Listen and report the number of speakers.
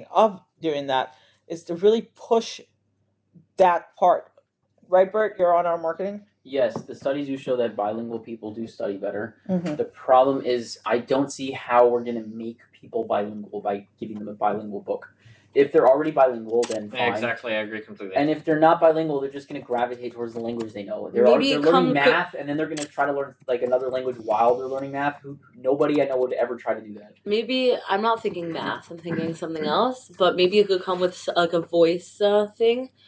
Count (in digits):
4